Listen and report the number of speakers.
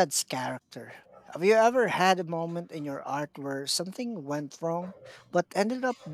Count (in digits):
1